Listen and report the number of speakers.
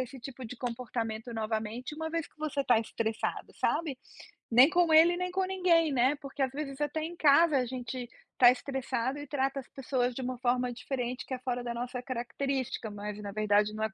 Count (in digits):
1